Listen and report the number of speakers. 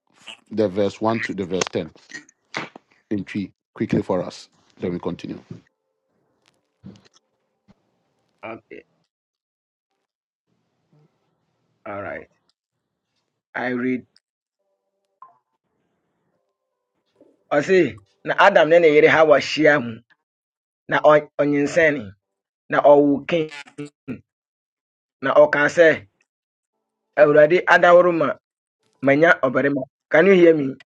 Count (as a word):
two